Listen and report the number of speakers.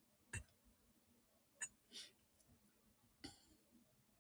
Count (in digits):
0